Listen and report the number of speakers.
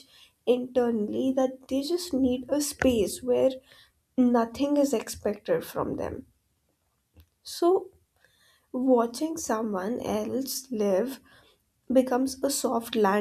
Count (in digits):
1